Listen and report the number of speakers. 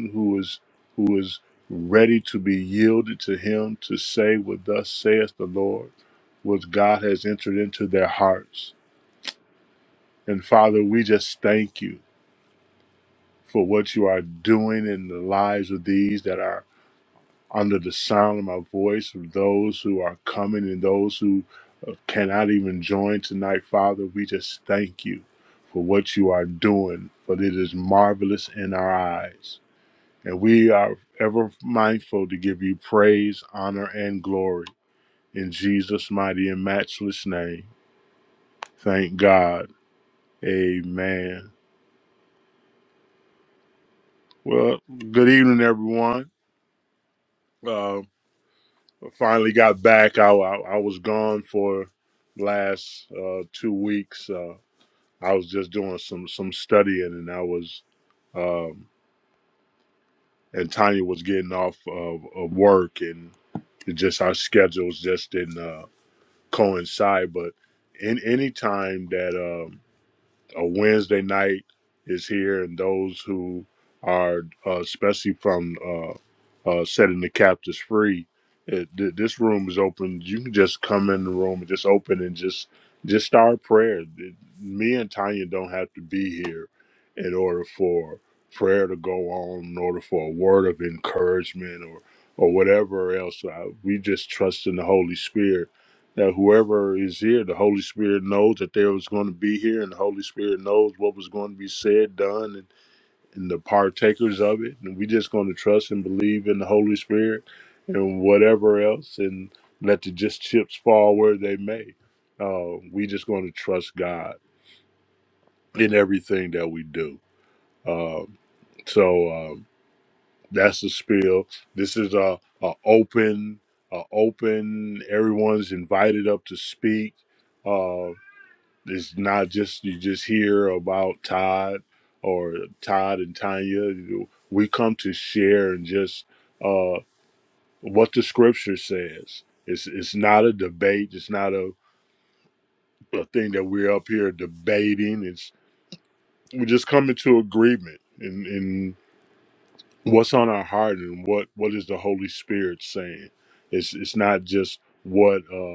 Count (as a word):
one